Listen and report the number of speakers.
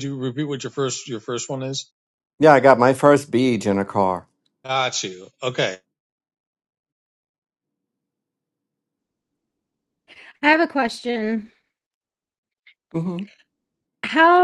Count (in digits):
3